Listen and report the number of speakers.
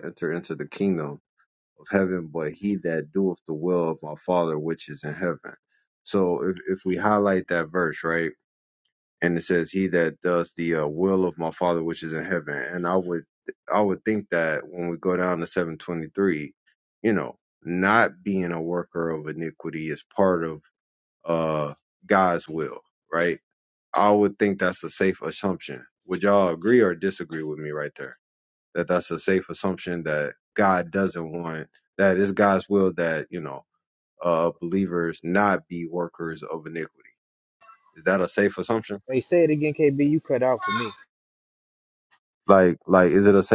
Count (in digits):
2